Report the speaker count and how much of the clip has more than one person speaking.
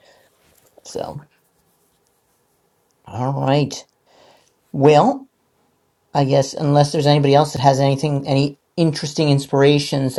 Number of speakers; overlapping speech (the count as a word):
one, no overlap